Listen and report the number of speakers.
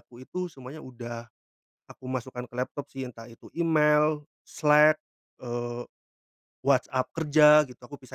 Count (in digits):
1